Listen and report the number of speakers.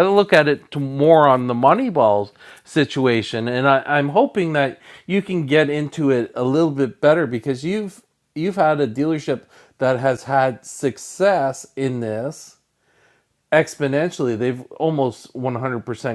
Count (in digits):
1